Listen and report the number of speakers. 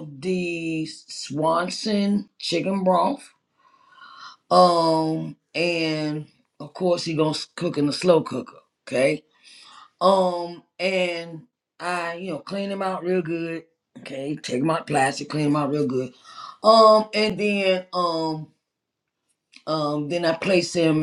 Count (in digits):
1